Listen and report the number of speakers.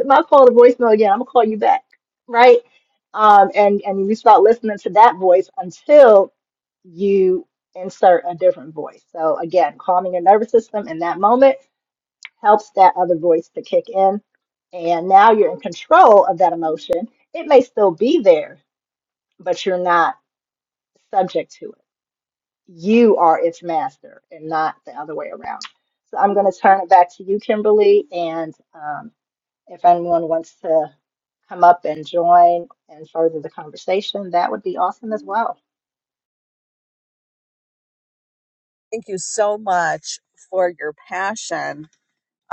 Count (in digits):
2